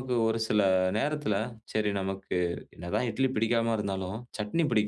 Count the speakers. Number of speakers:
1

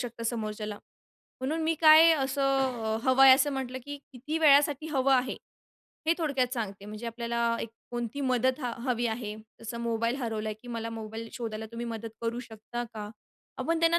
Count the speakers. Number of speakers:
1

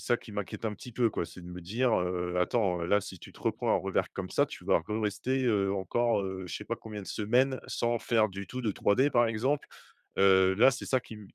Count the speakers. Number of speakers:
1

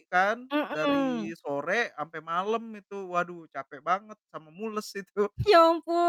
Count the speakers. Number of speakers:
2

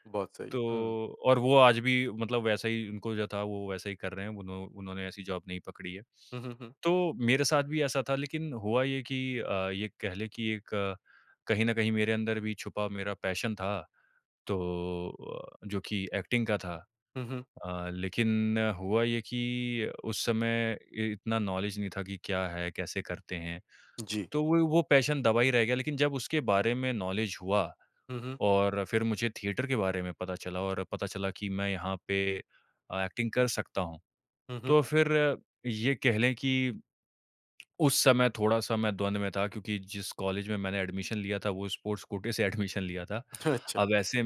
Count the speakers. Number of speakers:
2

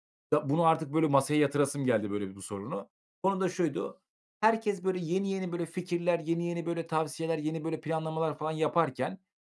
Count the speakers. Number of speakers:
1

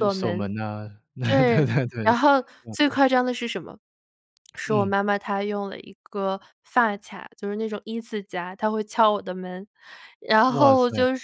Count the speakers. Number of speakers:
2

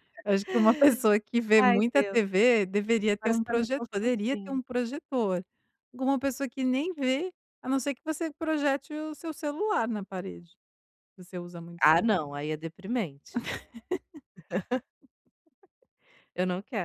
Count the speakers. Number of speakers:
2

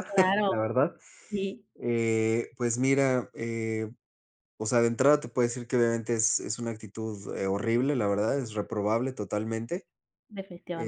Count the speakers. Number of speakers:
2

